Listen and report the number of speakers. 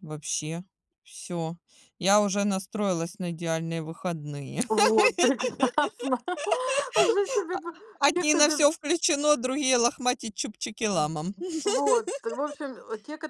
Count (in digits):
2